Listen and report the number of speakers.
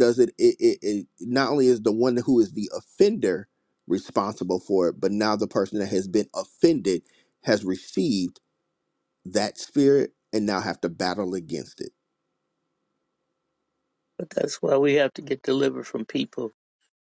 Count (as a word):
two